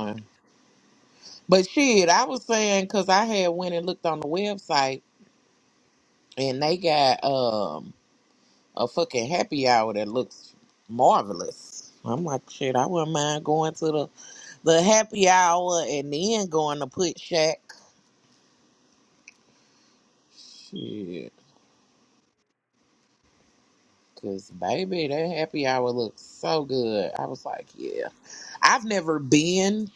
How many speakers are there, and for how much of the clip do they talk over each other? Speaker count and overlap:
1, no overlap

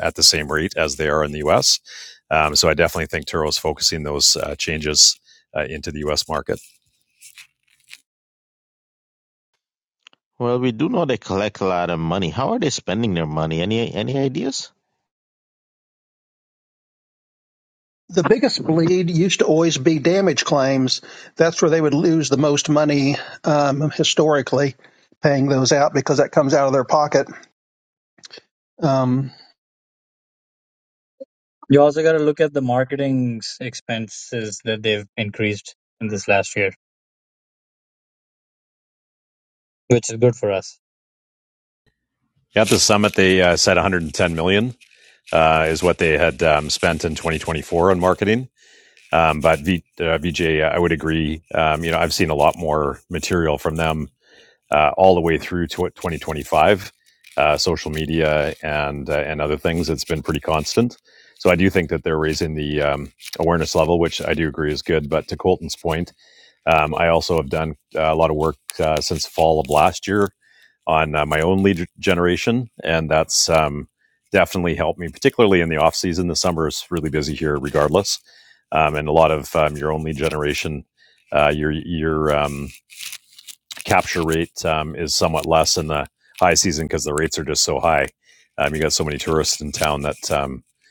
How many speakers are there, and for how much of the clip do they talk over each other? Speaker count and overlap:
4, no overlap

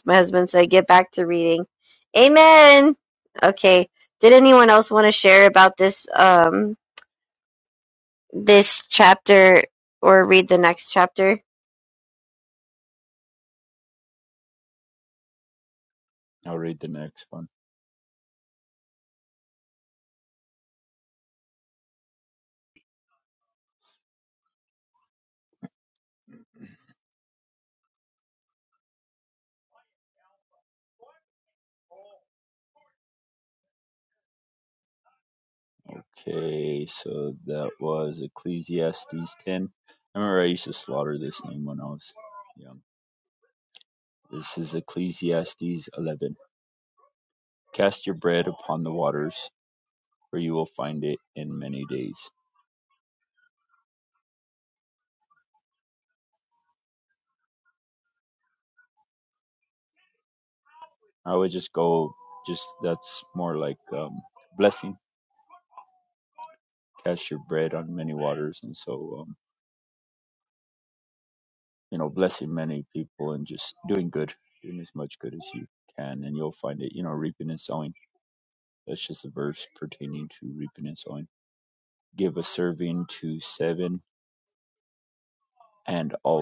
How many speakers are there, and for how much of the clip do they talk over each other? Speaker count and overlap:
2, no overlap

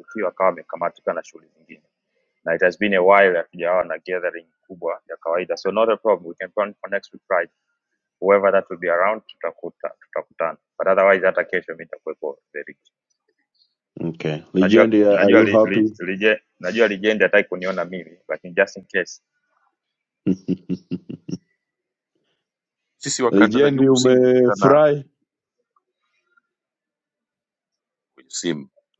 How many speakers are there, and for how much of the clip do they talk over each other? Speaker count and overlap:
3, about 10%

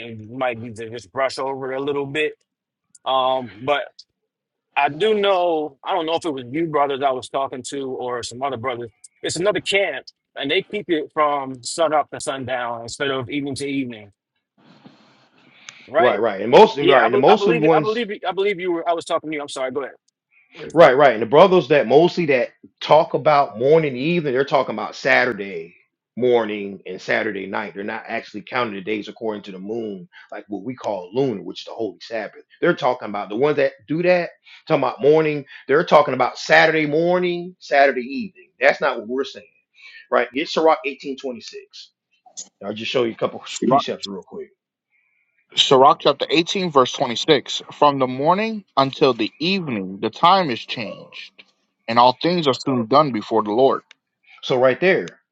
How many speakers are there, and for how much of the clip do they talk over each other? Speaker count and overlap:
3, about 3%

